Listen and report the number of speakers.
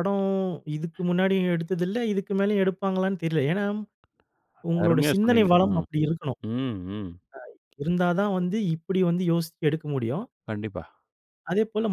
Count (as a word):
two